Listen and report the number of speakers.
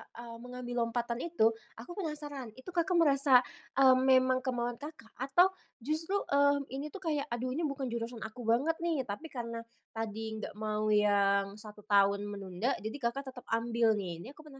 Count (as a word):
one